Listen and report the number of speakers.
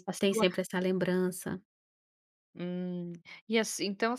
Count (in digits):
2